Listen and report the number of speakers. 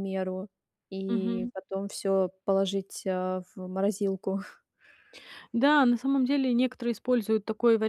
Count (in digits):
2